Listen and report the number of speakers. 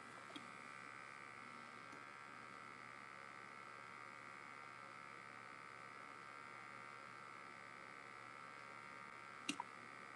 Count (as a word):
zero